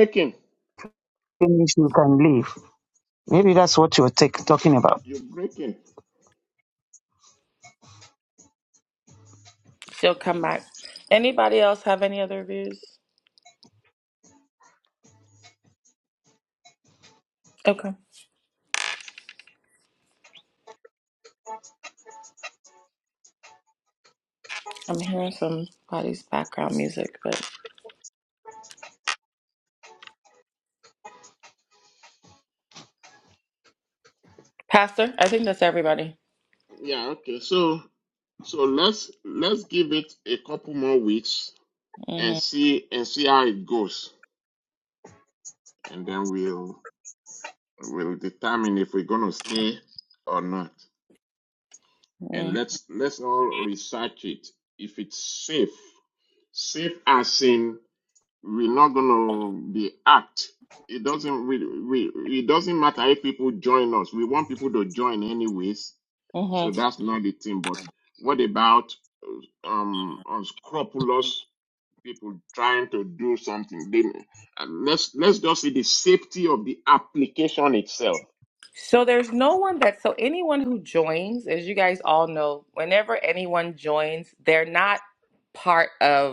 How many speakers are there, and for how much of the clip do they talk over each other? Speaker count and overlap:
3, about 1%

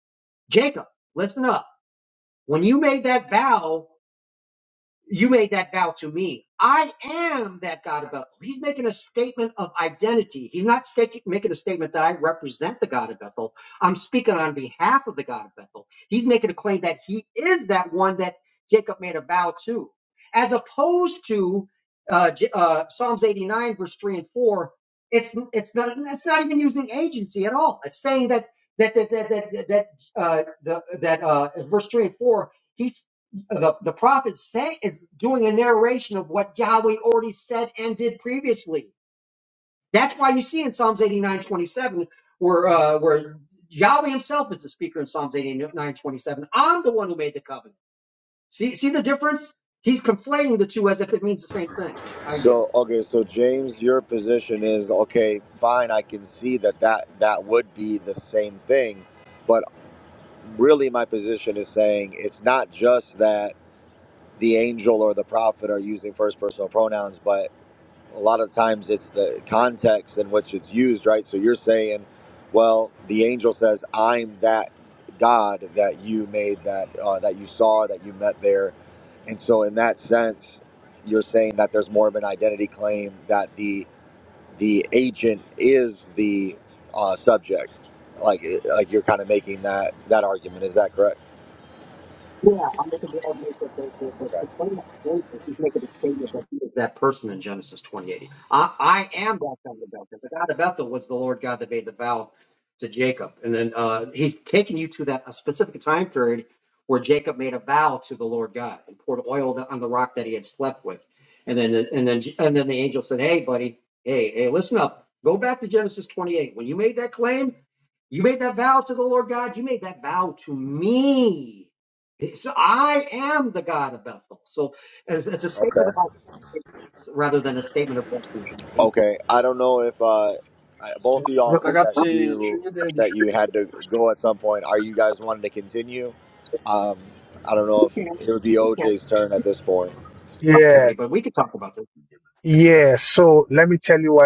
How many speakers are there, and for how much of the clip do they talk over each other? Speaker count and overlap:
3, about 1%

